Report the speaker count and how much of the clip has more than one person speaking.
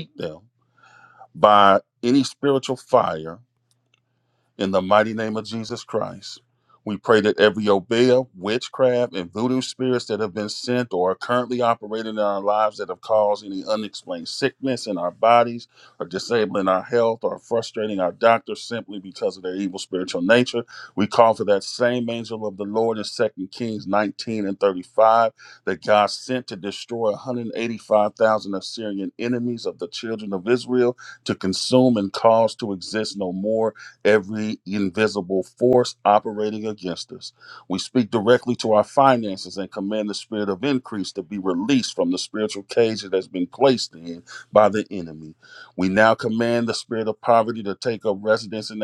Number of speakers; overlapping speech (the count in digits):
1, no overlap